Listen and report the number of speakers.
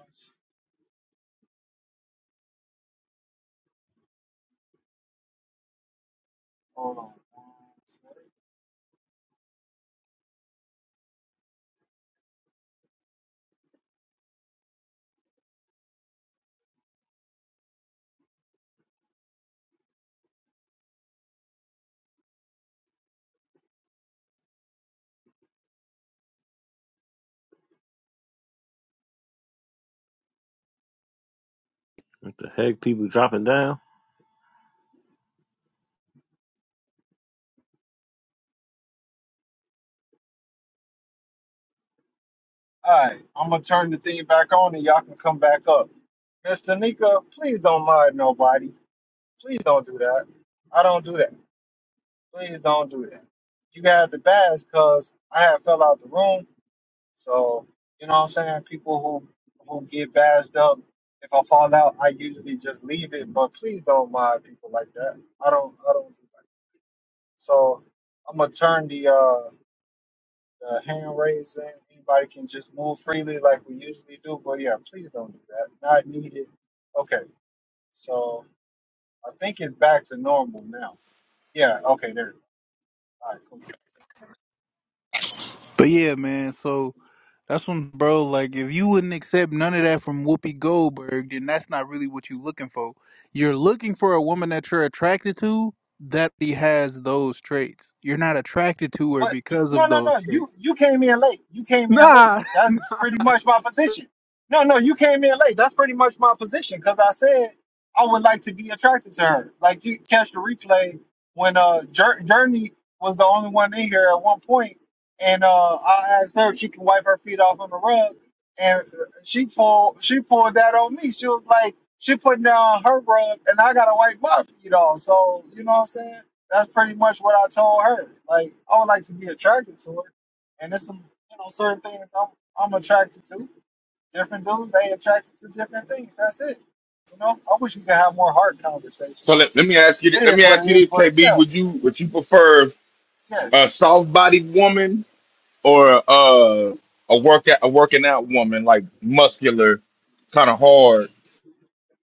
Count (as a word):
four